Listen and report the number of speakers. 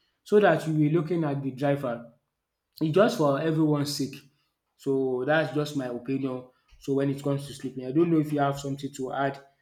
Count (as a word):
one